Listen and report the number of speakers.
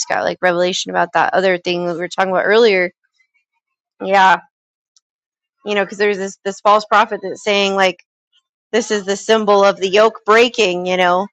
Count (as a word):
one